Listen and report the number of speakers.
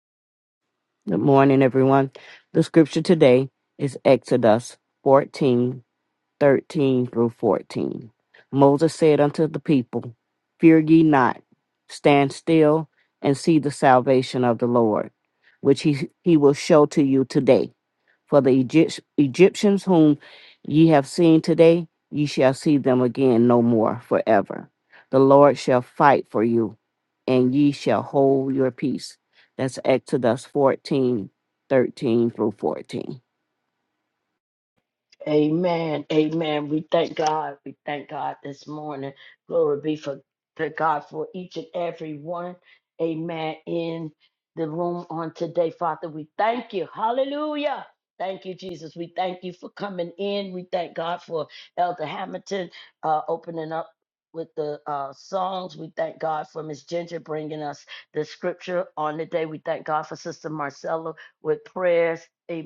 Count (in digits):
2